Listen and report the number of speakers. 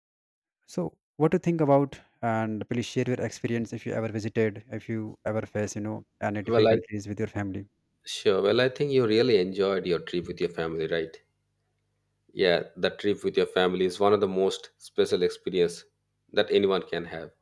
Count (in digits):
2